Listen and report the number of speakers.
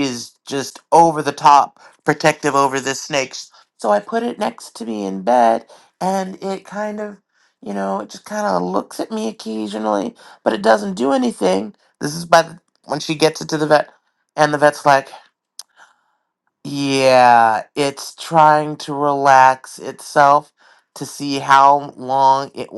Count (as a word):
one